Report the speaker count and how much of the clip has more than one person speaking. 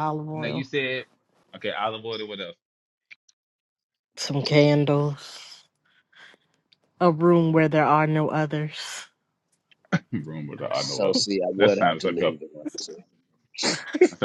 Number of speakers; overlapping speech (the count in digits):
3, about 8%